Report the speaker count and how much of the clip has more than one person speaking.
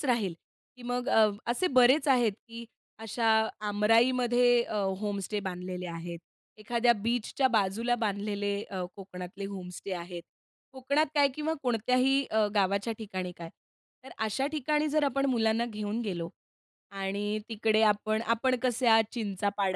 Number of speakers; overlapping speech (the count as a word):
one, no overlap